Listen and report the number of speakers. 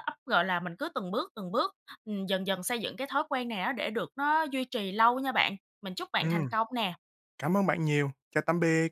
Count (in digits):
2